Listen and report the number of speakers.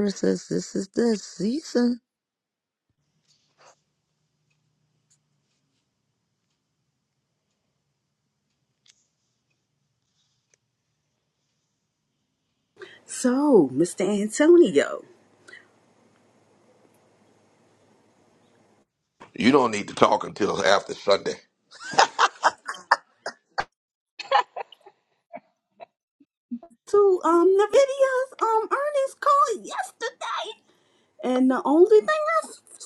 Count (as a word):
three